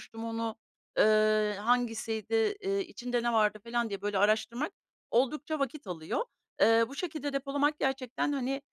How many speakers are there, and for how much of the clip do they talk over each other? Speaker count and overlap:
1, no overlap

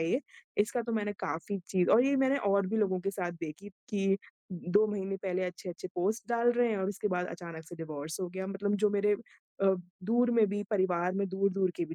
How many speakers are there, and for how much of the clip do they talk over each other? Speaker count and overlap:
1, no overlap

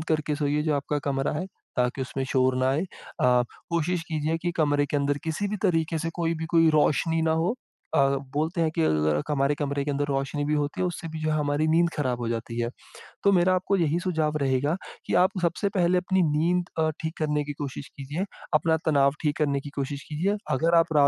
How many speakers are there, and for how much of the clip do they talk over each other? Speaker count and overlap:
1, no overlap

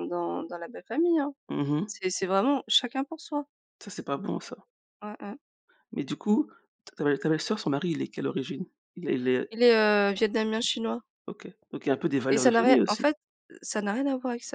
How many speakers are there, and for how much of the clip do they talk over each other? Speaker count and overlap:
2, about 5%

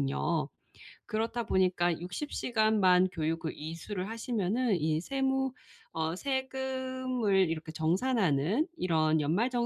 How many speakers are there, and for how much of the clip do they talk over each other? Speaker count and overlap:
1, no overlap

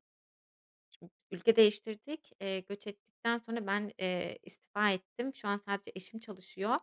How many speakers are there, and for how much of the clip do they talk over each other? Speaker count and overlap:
1, no overlap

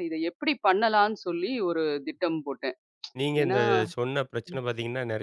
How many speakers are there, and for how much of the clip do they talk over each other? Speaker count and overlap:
2, about 6%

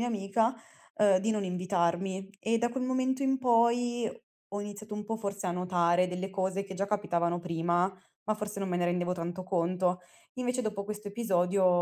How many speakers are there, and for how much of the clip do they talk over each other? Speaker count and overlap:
1, no overlap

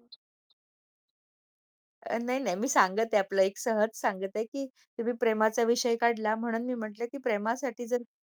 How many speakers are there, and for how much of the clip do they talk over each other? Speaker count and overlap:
1, no overlap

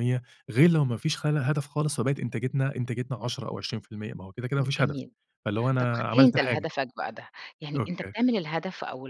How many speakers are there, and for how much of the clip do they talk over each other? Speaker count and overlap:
2, about 14%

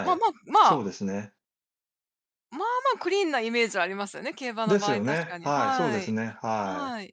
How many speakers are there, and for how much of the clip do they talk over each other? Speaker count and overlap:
2, about 28%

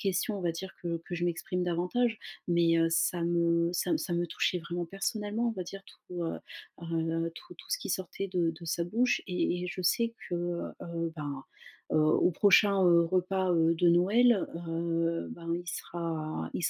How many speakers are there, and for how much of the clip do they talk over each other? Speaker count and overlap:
1, no overlap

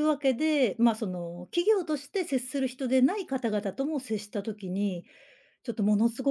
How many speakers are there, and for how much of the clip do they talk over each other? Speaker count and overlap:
1, no overlap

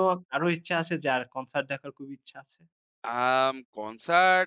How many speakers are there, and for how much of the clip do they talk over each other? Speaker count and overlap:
2, no overlap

